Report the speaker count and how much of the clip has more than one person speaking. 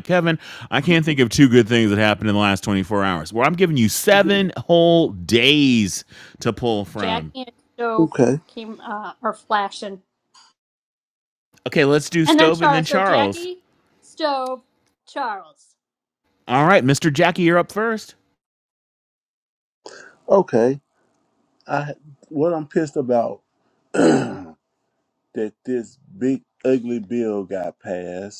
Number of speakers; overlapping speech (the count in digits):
3, about 5%